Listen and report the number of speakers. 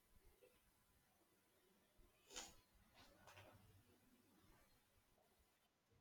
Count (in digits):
0